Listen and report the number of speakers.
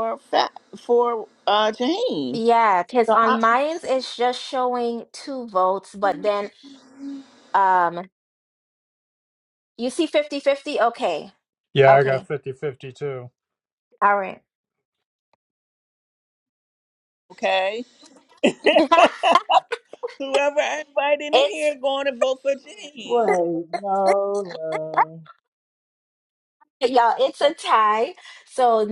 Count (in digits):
4